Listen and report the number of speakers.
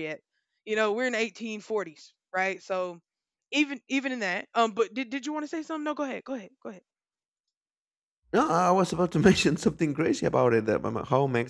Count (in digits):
2